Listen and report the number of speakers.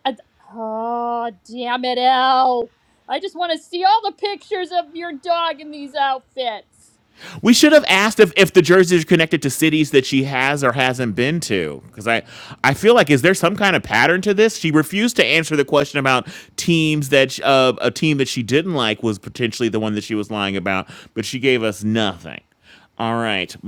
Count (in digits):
2